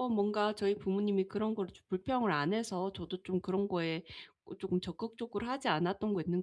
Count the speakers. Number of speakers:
one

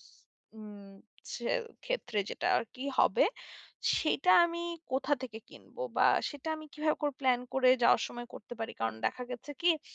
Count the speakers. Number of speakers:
one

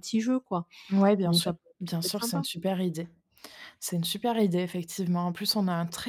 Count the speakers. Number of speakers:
two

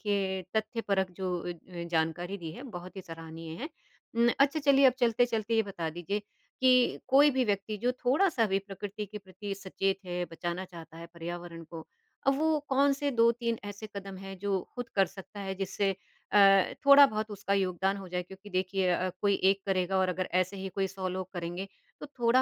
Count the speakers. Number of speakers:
one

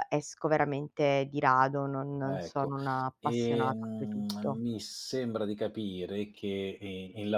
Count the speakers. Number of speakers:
two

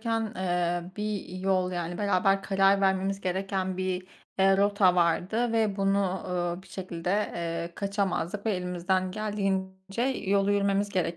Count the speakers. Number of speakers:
one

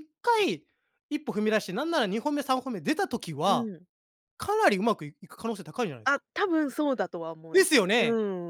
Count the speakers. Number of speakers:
two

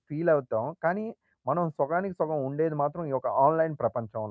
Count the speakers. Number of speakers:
one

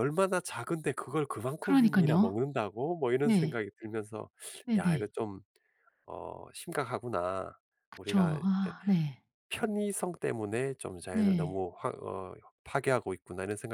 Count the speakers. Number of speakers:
two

